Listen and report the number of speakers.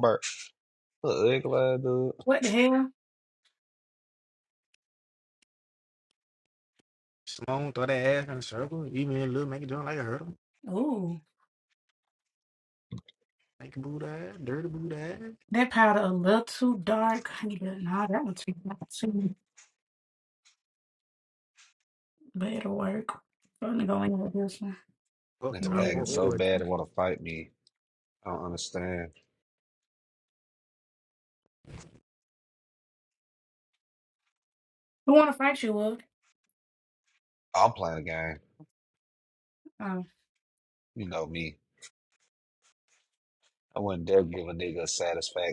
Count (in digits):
3